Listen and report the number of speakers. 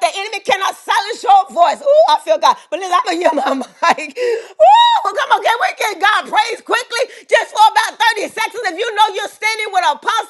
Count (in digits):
1